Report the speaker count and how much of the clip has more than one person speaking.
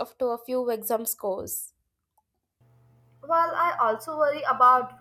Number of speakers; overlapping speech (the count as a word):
two, no overlap